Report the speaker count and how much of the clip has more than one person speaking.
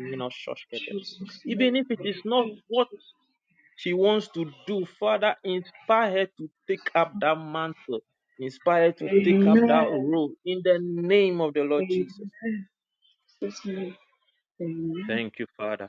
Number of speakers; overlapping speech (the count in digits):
2, about 18%